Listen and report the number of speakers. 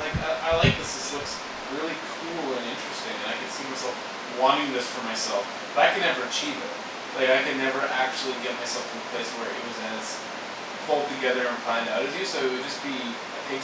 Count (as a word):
one